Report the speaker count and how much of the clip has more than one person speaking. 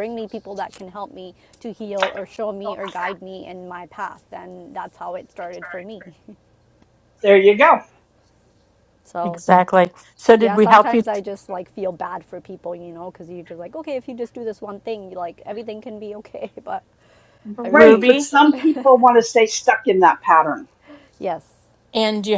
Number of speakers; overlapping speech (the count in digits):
3, about 6%